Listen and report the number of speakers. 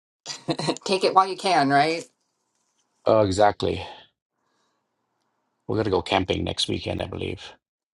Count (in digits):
2